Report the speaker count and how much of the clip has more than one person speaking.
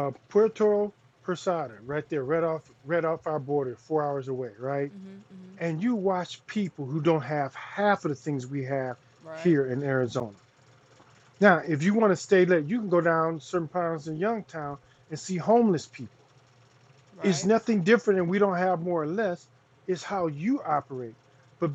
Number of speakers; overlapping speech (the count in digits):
2, about 2%